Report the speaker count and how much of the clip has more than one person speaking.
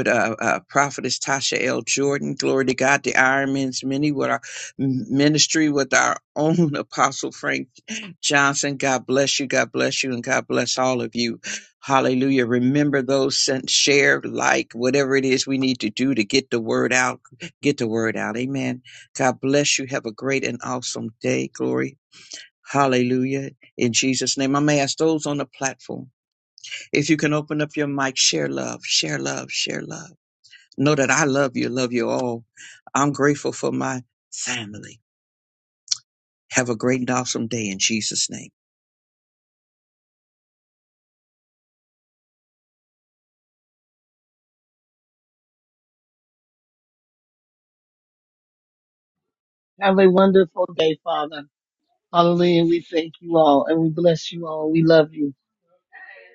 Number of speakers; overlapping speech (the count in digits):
2, no overlap